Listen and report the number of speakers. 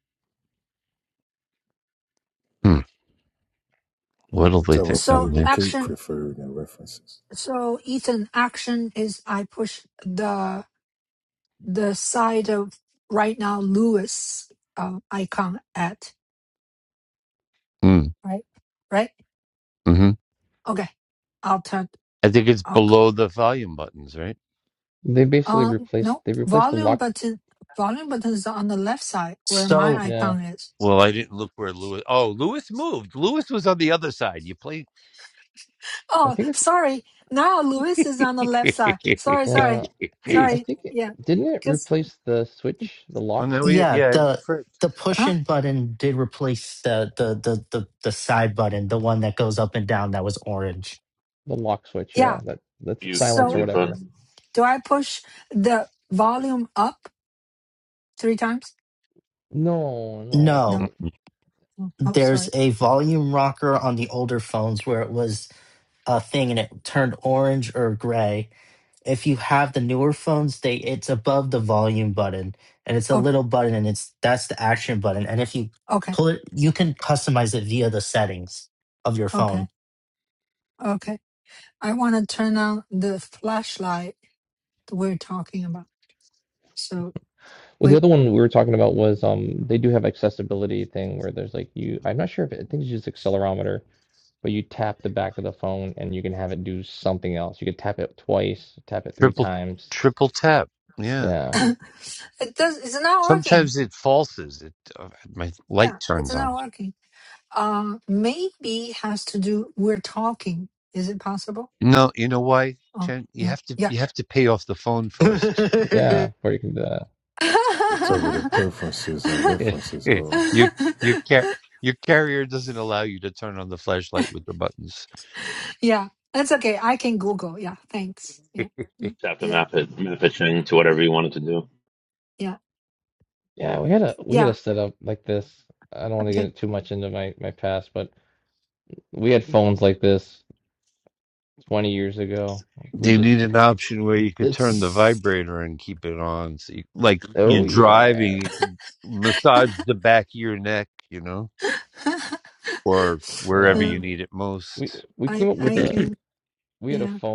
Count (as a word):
six